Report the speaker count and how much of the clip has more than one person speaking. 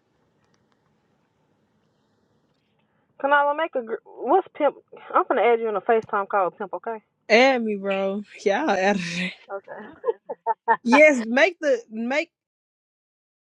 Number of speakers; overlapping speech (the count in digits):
2, no overlap